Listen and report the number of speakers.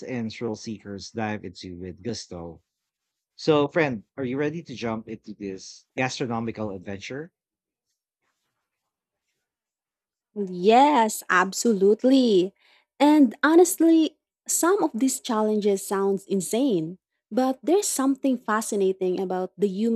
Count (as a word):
two